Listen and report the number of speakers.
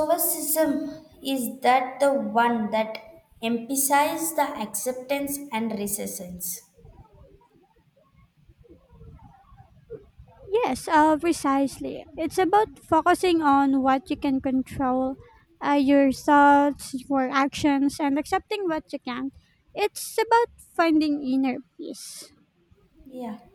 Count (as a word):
two